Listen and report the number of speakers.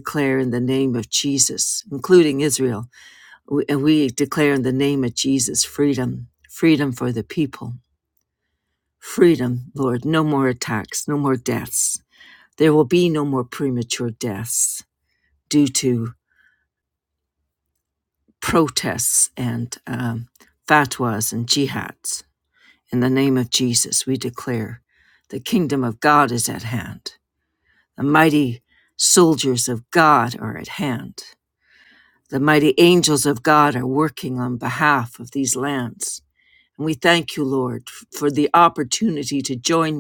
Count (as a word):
one